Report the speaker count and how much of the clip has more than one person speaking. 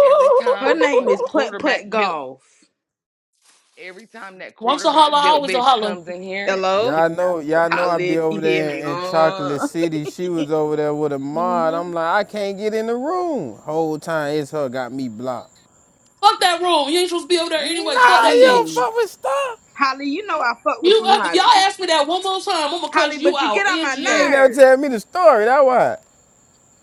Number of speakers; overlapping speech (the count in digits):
4, about 38%